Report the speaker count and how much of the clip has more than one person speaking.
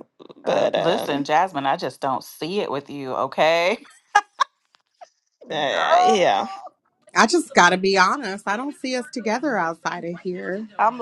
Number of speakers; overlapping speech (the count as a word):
three, about 9%